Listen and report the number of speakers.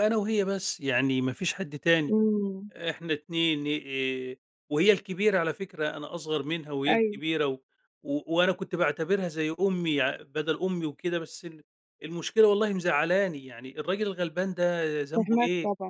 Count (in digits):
2